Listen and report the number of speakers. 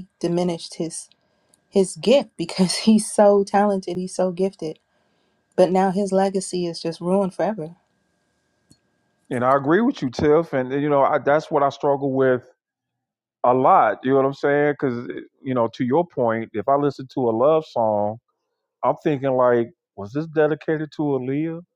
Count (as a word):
two